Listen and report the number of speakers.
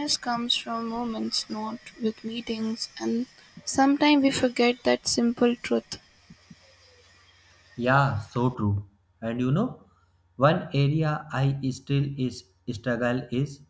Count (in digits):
2